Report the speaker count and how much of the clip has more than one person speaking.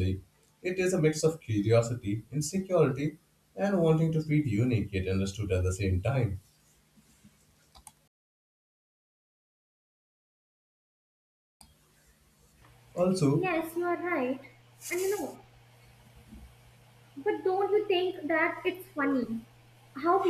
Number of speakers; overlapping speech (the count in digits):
2, about 1%